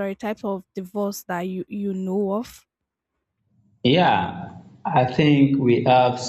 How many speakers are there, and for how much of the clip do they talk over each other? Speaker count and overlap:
two, no overlap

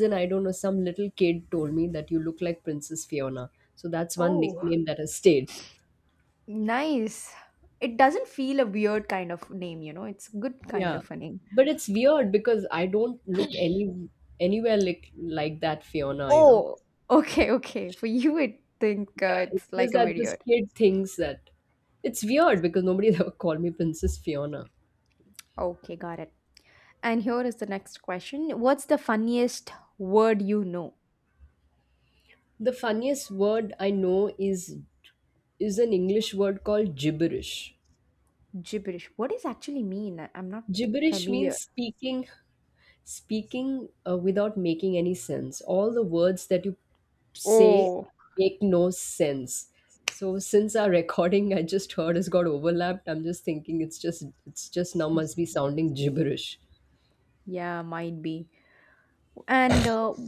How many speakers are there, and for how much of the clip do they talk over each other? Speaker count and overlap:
two, about 5%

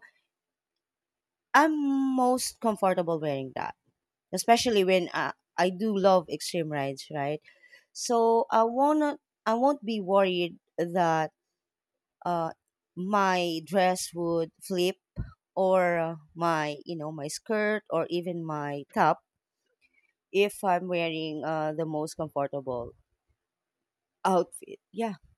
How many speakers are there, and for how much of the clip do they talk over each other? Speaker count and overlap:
one, no overlap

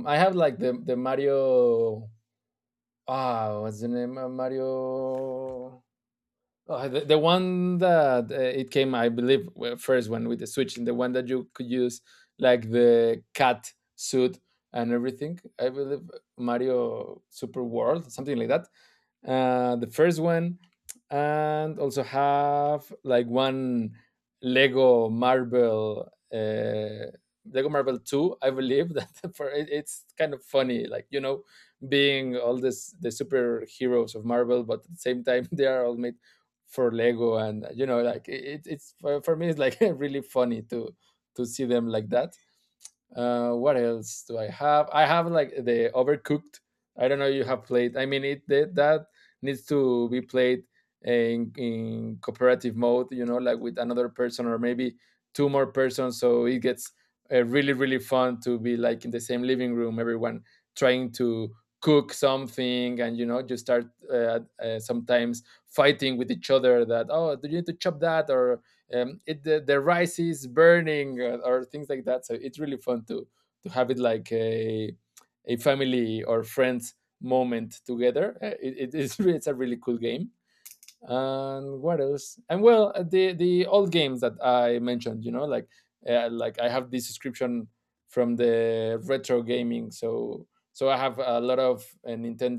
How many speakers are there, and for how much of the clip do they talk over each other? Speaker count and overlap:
one, no overlap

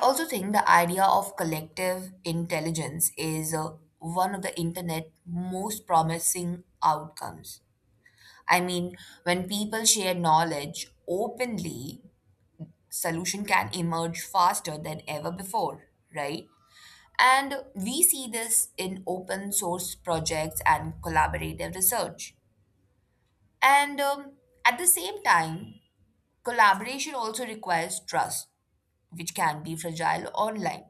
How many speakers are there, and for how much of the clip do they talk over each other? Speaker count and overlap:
one, no overlap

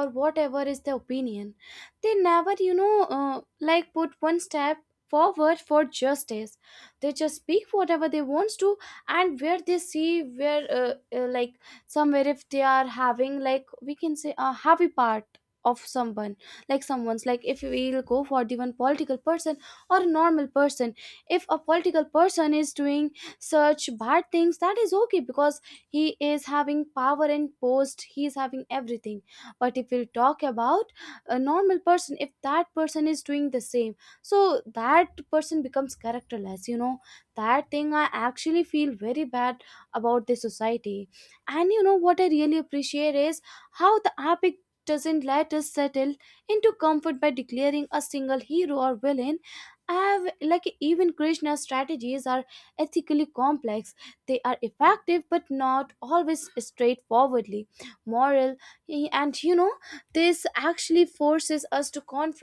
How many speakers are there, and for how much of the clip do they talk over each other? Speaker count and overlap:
one, no overlap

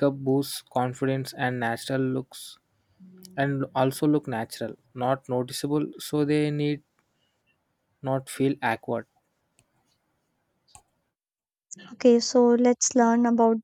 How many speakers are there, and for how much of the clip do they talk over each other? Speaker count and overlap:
two, no overlap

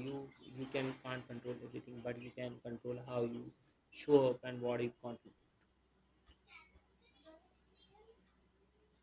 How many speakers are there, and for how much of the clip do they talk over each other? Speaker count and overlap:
one, no overlap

